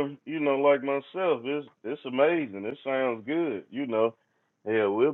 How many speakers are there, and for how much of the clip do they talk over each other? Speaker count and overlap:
one, no overlap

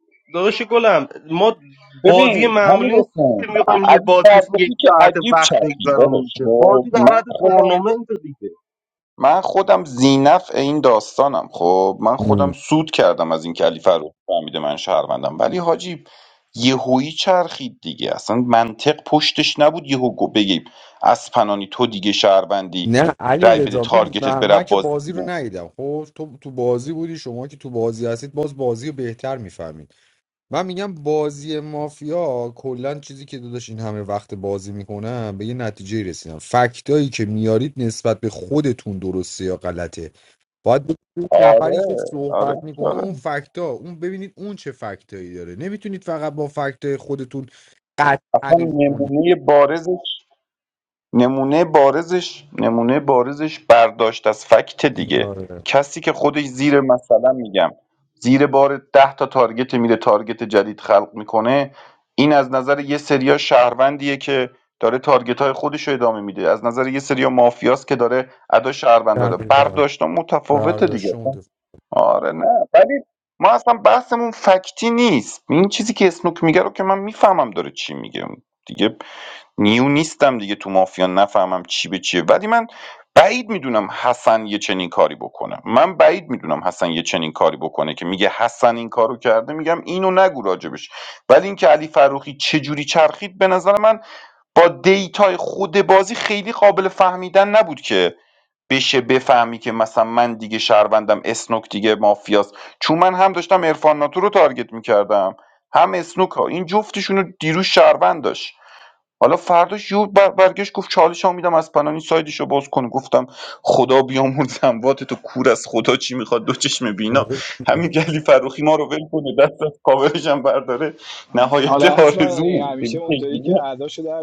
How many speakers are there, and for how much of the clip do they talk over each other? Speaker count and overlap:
four, about 9%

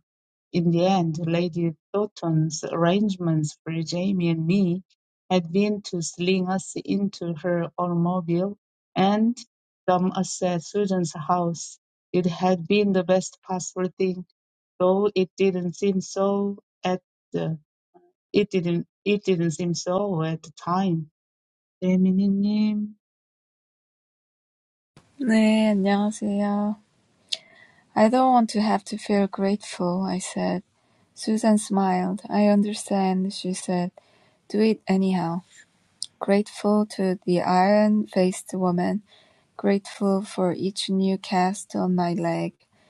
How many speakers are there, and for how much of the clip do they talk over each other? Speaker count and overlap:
two, no overlap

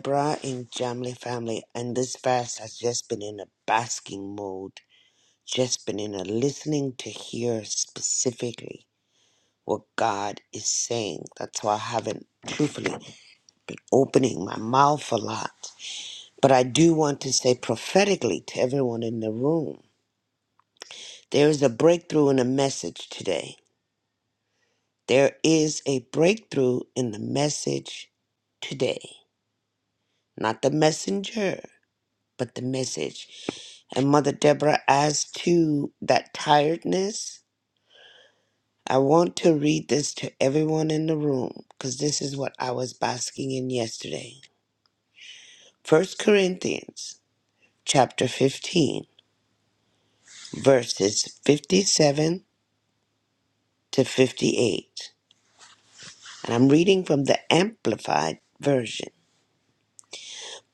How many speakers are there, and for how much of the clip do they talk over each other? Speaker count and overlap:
one, no overlap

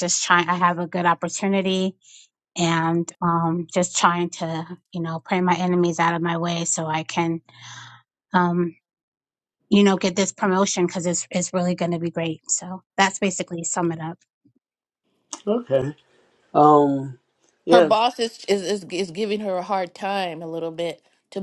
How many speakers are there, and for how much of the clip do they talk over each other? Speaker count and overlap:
three, about 1%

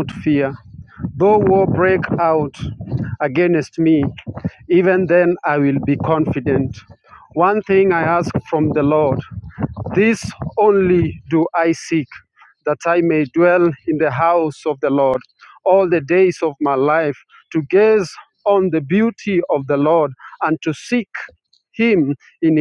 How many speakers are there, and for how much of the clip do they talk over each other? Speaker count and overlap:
one, no overlap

